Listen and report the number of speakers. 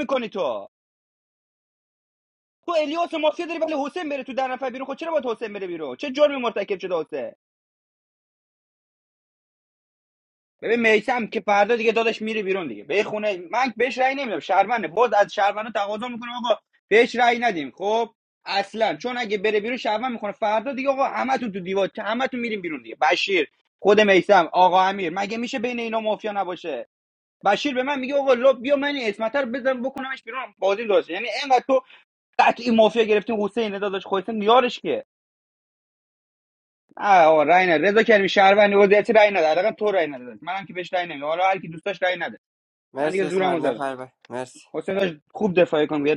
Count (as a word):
two